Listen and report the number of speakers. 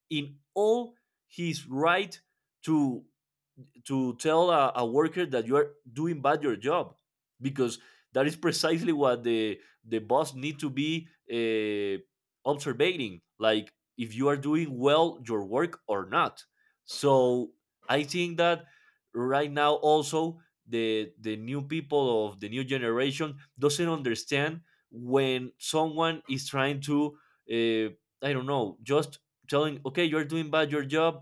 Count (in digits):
1